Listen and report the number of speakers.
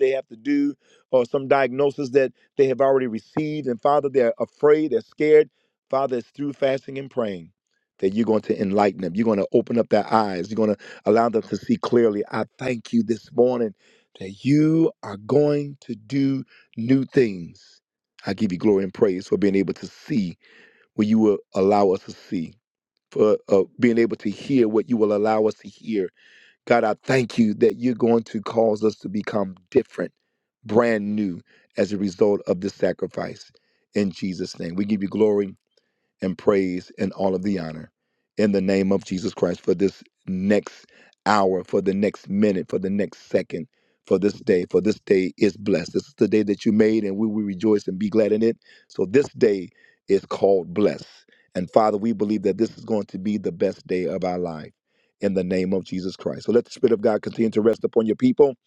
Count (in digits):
1